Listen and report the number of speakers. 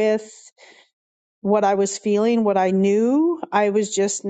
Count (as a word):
one